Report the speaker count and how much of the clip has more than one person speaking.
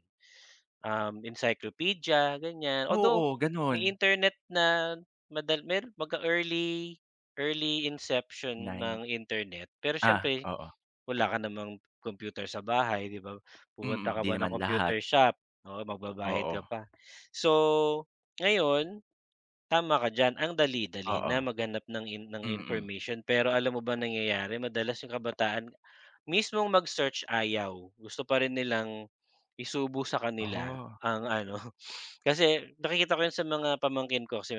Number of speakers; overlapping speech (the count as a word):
two, about 12%